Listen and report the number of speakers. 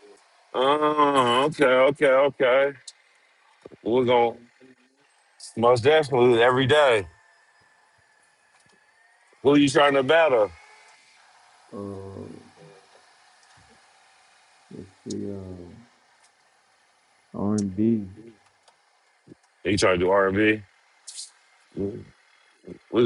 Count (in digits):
2